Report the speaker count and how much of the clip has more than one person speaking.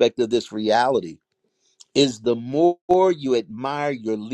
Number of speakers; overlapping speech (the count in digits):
1, no overlap